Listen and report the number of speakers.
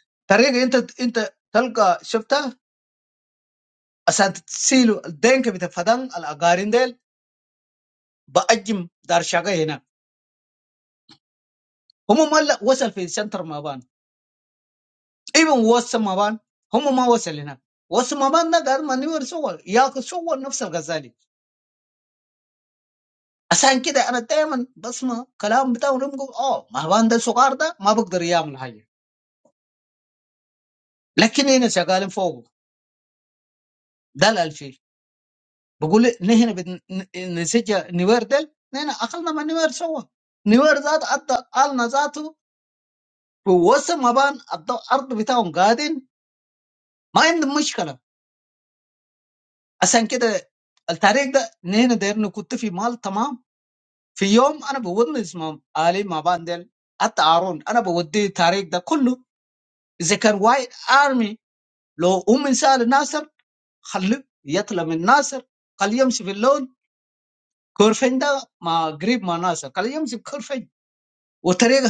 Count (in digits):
1